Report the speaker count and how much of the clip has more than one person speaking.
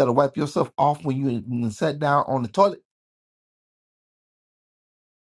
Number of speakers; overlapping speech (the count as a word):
one, no overlap